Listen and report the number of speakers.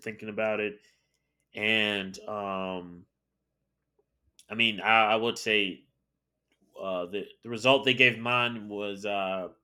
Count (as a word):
one